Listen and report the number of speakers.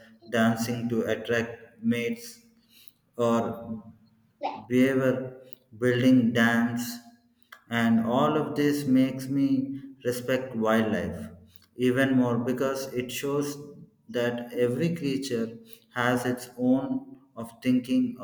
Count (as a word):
one